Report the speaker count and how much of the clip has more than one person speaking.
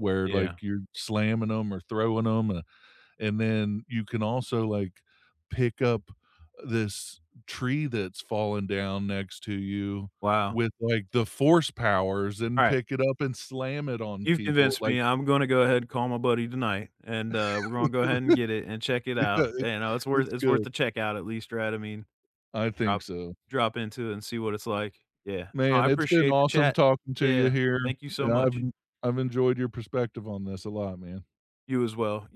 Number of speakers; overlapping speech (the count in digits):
2, about 15%